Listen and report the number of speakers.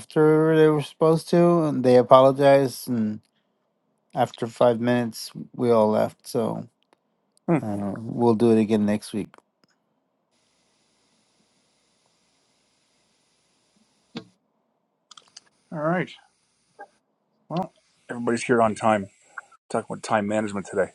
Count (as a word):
two